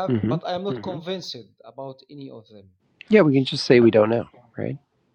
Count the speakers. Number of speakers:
2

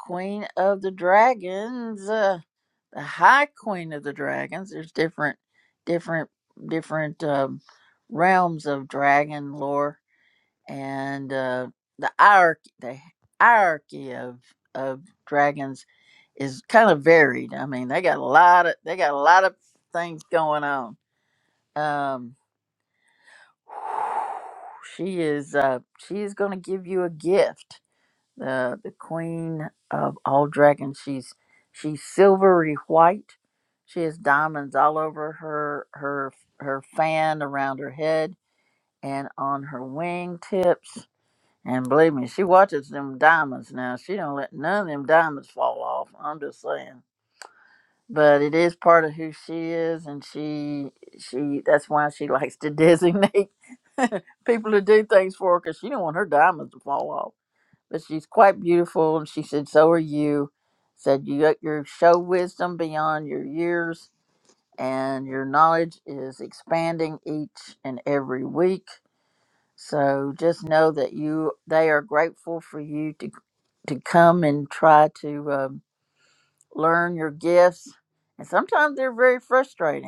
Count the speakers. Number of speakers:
1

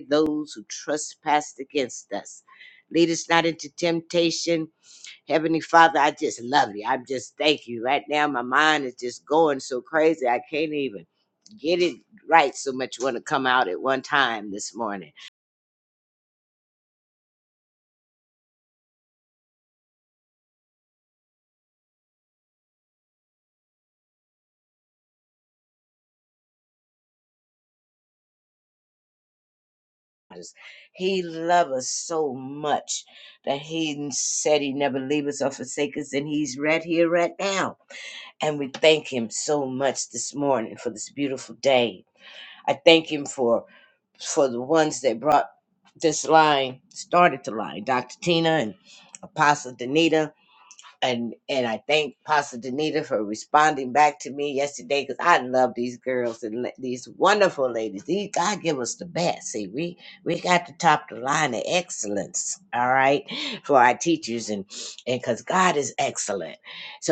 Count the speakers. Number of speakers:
1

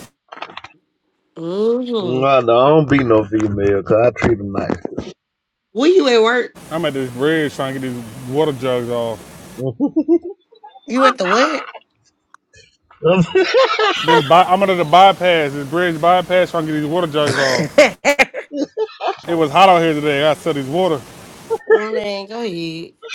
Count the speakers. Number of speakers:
3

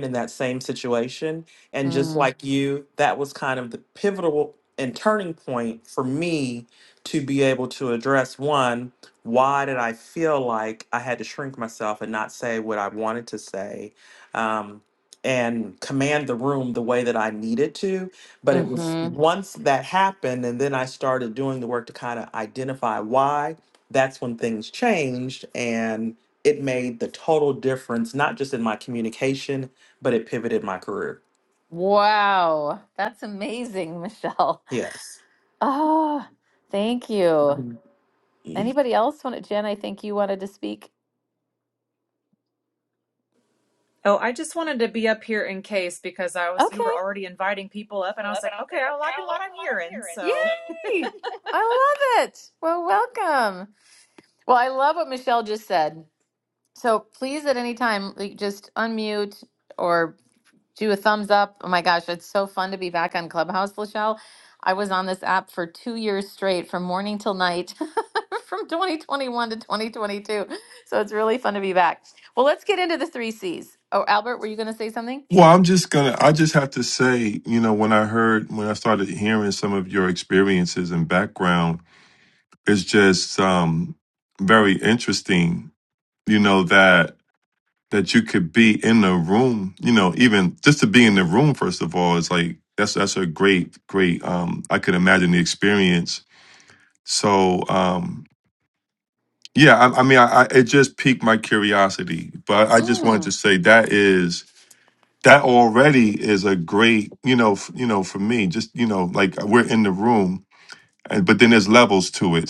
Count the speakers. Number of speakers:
4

